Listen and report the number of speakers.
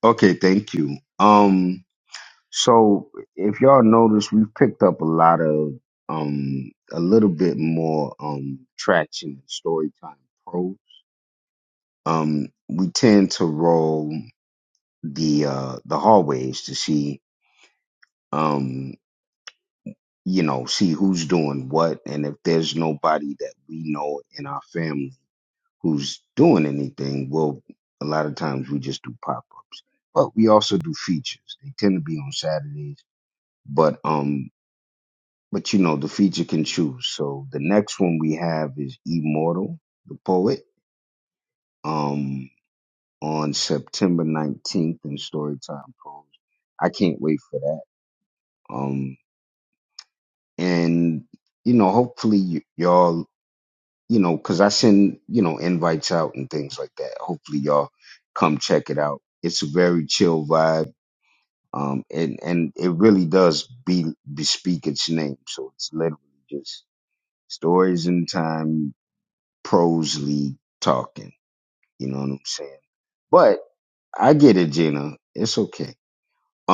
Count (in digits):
1